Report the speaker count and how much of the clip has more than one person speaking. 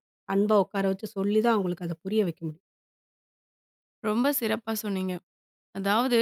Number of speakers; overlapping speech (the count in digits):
2, no overlap